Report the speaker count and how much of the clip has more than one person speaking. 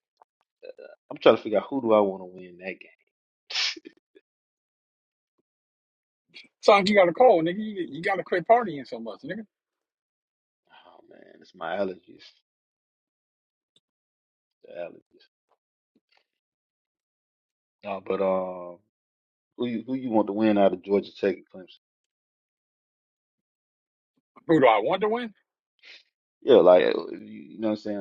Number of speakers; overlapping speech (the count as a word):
two, no overlap